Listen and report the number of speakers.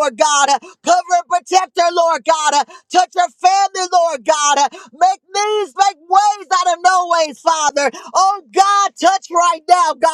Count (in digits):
1